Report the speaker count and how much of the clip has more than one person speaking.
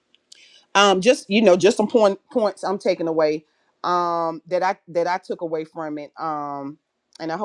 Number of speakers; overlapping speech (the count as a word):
one, no overlap